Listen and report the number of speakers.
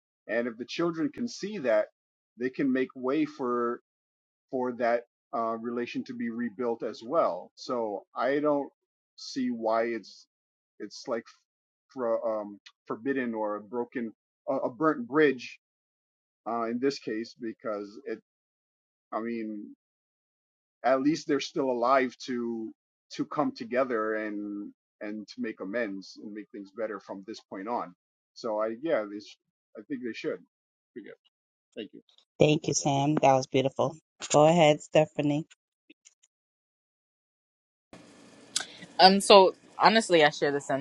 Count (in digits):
3